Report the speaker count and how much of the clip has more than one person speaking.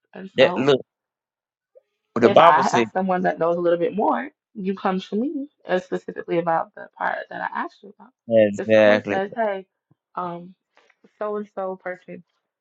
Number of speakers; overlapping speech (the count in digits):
2, about 12%